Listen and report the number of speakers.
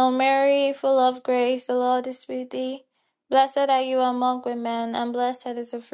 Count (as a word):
one